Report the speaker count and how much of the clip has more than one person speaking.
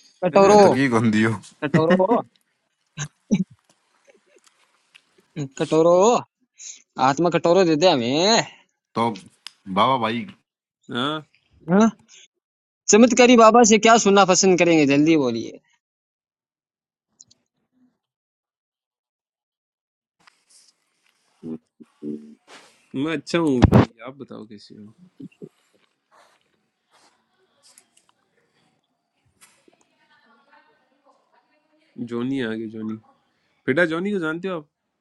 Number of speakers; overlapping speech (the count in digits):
3, about 1%